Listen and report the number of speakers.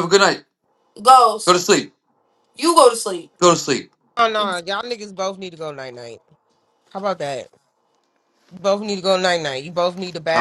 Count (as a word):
three